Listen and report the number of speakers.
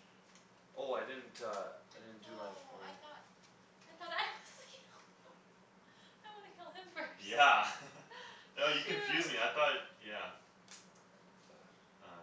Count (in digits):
3